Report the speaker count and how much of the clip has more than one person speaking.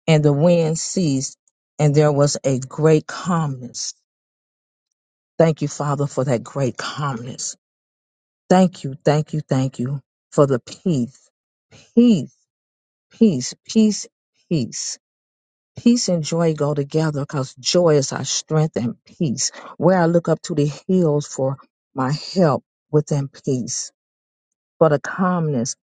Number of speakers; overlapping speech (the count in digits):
1, no overlap